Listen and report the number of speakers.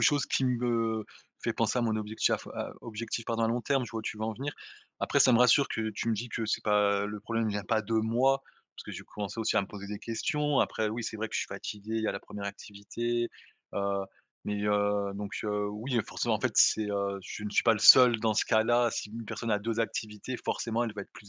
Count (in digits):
1